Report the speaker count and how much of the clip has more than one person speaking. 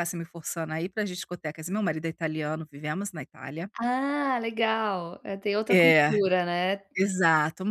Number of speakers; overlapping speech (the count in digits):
2, about 6%